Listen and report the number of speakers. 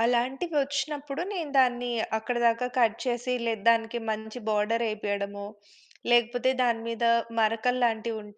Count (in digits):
1